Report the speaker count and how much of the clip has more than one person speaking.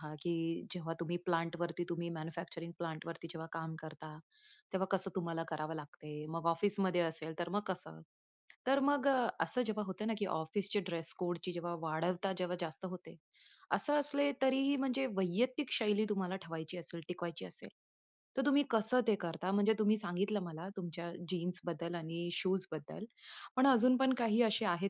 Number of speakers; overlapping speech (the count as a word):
one, no overlap